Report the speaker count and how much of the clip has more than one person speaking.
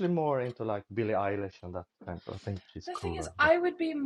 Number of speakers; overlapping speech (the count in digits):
2, about 15%